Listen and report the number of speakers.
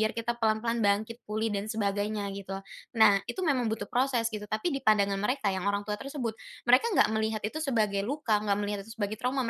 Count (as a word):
one